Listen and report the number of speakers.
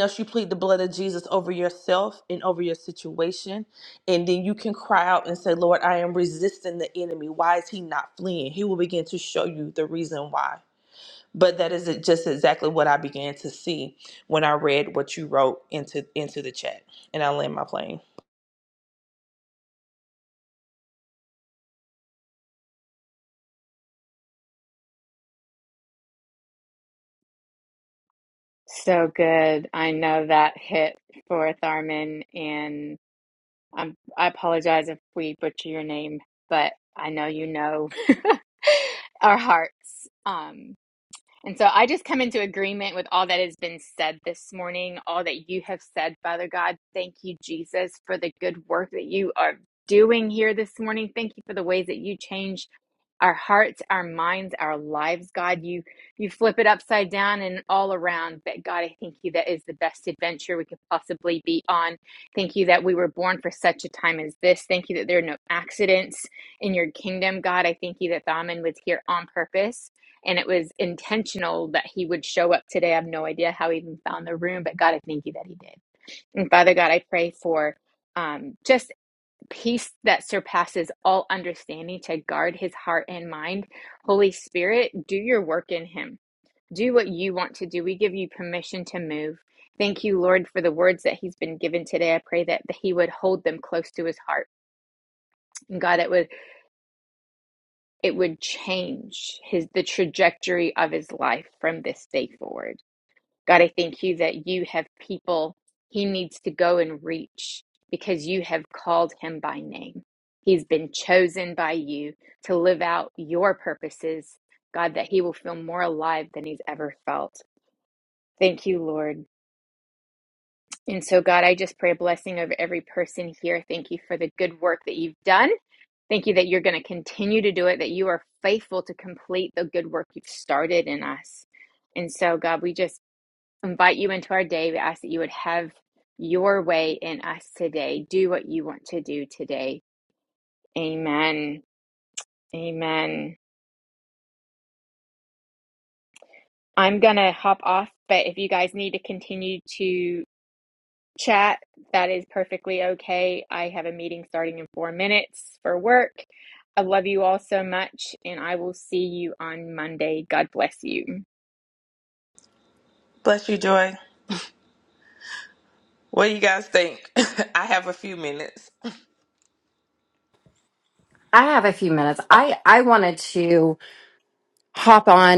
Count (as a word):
three